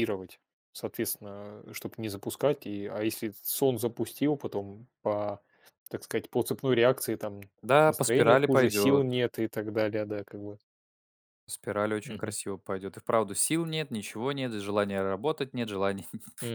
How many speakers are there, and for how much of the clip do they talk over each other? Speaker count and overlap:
two, about 8%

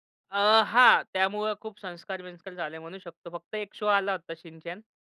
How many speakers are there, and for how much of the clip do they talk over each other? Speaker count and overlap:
one, no overlap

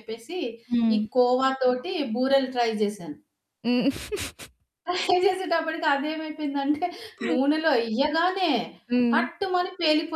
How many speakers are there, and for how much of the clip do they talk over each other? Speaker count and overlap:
two, about 3%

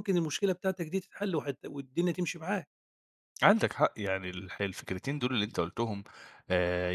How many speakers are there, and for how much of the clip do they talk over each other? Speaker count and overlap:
two, no overlap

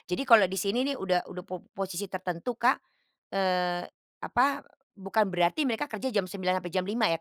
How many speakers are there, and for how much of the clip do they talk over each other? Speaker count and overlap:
one, no overlap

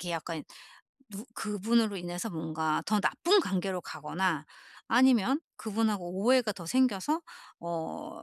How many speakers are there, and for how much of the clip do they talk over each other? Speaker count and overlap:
one, no overlap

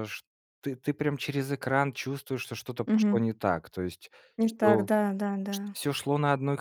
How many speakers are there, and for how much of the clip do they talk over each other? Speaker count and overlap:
two, about 14%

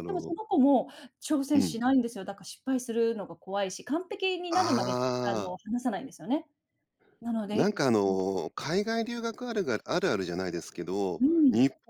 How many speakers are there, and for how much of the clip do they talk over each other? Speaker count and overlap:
two, about 16%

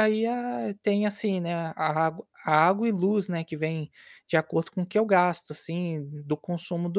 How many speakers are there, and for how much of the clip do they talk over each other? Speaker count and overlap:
one, no overlap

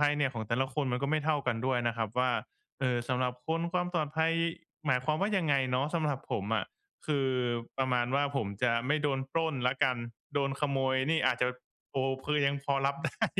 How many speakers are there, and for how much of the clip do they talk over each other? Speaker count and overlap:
one, no overlap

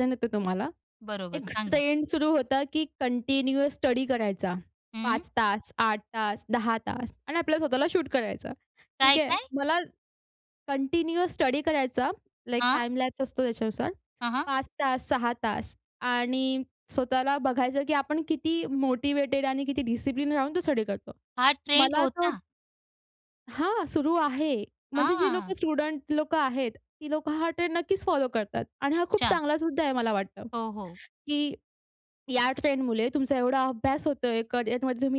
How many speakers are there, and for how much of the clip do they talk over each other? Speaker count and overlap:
two, about 9%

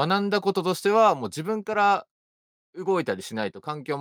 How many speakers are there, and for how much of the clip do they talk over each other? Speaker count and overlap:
one, no overlap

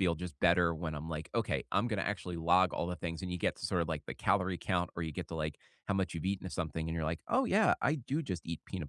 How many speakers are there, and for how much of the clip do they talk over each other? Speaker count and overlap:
one, no overlap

